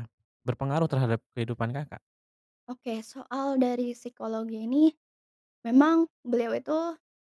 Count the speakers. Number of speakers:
two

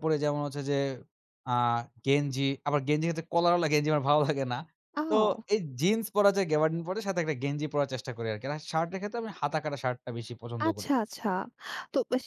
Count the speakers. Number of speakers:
two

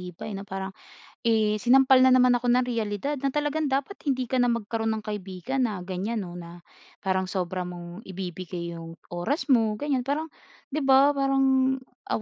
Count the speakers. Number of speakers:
one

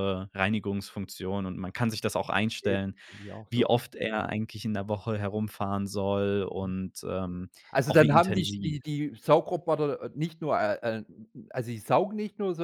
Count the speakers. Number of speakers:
two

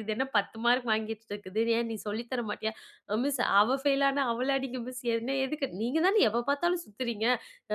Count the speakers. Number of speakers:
one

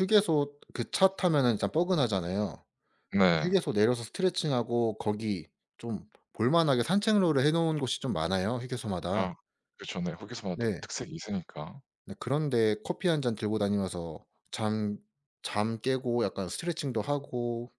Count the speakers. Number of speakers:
two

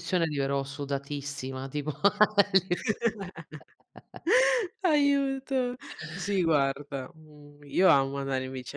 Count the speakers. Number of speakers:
two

